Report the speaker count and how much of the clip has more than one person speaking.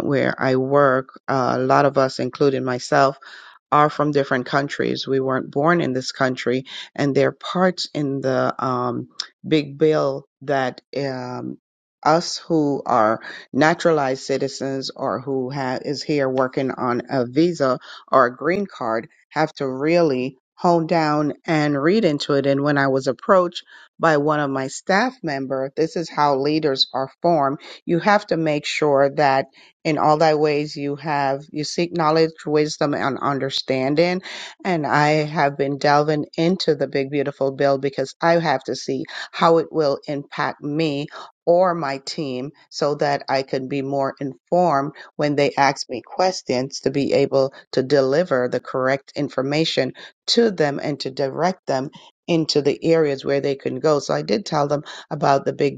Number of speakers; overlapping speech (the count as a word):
one, no overlap